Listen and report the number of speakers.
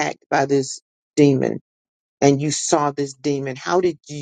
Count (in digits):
1